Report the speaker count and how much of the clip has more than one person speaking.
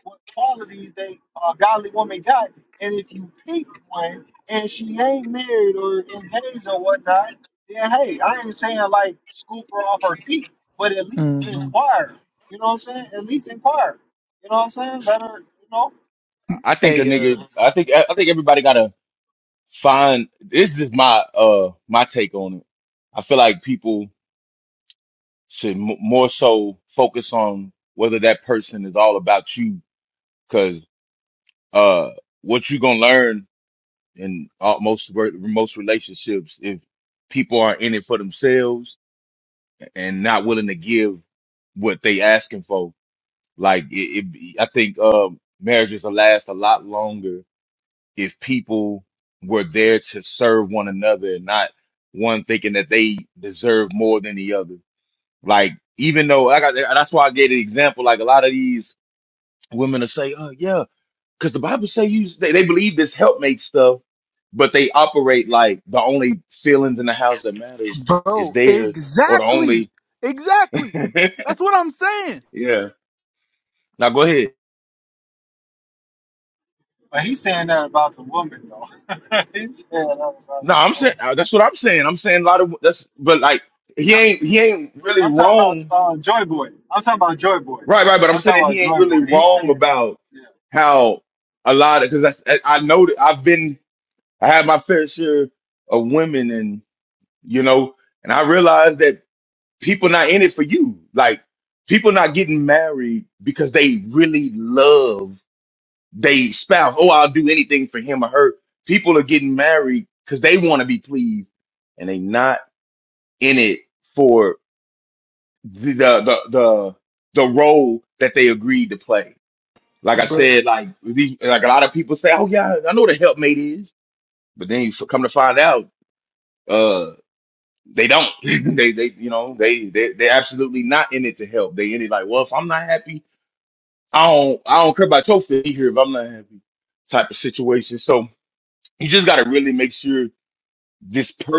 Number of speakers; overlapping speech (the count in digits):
3, about 3%